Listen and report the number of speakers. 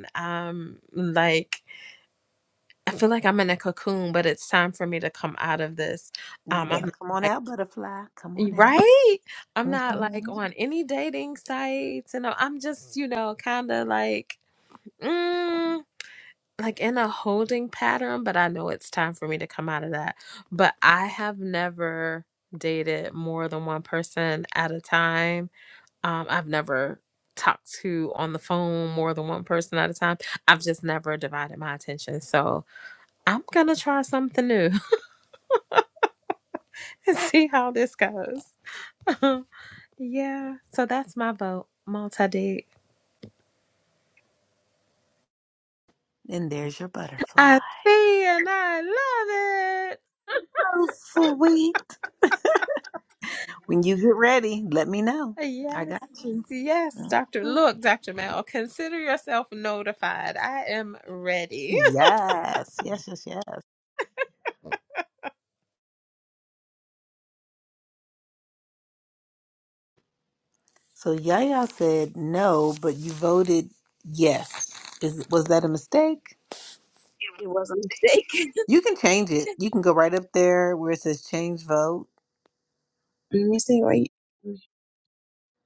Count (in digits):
3